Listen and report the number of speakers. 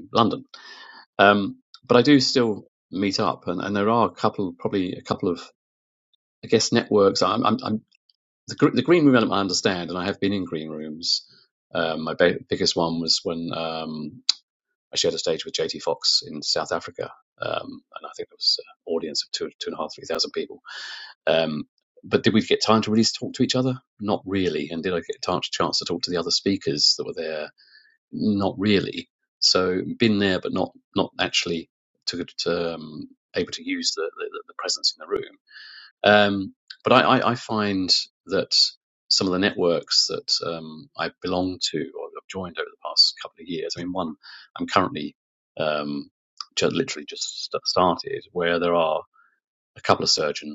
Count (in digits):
1